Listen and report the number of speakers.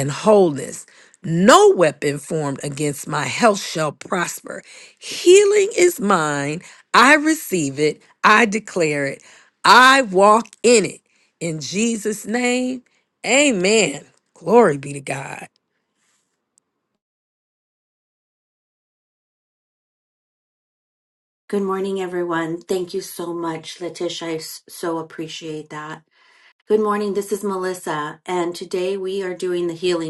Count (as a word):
two